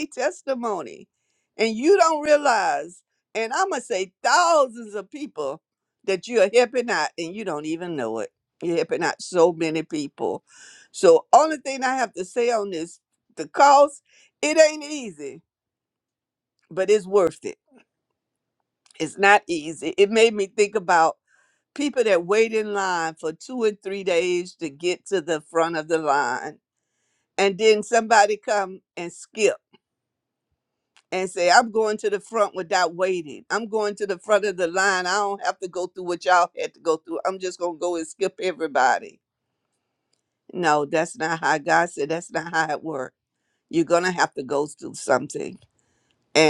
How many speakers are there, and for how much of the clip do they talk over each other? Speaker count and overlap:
1, no overlap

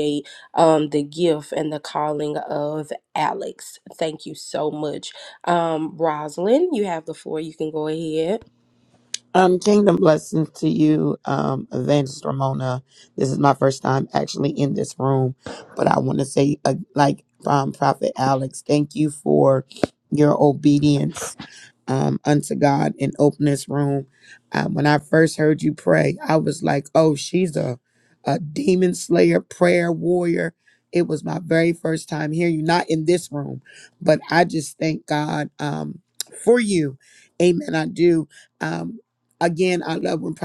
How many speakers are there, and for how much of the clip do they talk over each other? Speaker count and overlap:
2, no overlap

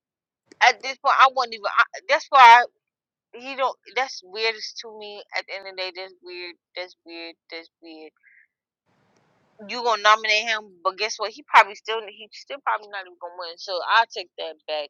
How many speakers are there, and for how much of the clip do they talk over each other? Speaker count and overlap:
1, no overlap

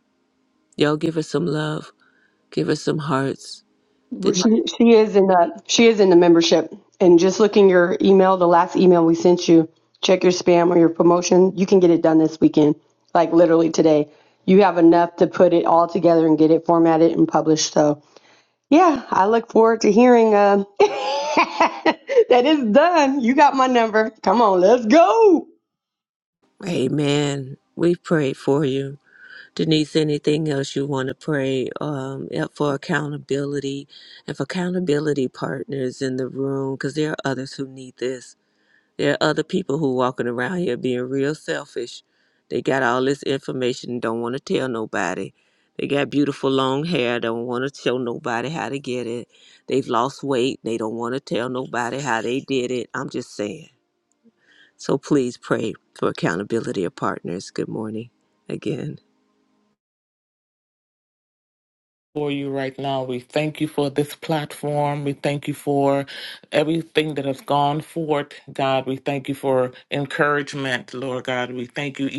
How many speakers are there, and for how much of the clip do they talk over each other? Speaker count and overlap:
3, under 1%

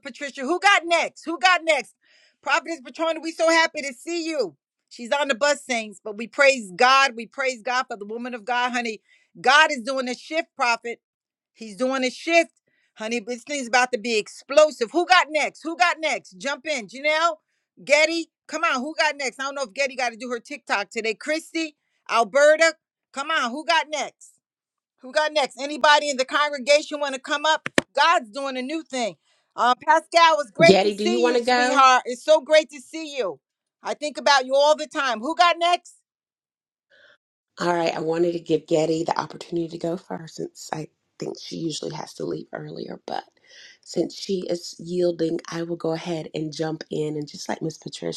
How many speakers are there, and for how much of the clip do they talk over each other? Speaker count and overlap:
2, about 3%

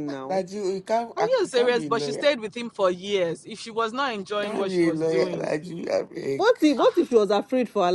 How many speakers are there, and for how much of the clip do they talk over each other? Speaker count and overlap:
3, about 35%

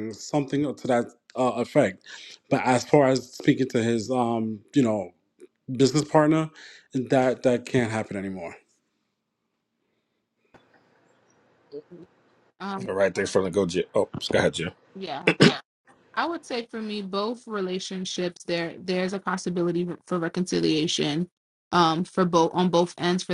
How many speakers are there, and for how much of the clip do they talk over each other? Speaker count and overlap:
3, under 1%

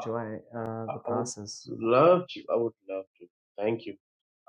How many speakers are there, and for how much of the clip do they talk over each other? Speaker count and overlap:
2, about 9%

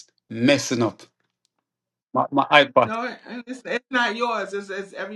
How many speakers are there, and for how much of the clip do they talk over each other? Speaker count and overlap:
2, about 1%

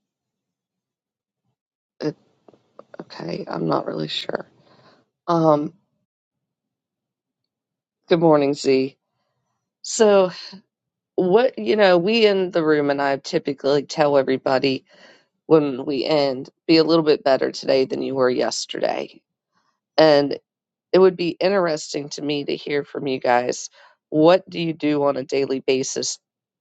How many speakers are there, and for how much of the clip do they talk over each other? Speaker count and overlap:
1, no overlap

